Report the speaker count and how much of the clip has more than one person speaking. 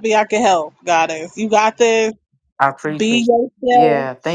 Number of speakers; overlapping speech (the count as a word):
two, about 15%